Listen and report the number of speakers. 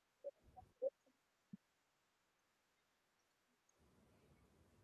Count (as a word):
zero